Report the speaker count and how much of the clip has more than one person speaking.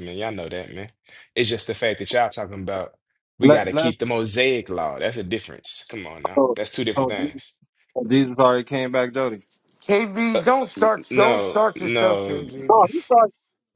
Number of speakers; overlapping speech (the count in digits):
3, about 21%